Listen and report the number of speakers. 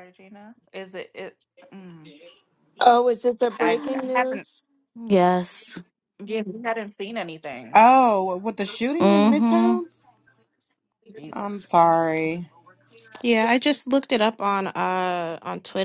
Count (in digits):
5